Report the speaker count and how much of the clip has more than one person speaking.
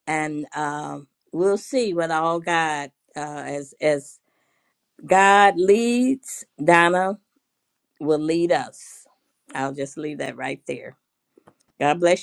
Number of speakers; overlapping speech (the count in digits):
1, no overlap